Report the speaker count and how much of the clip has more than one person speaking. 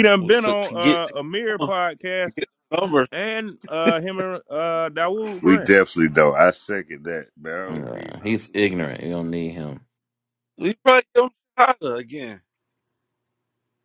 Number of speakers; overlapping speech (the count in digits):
4, about 14%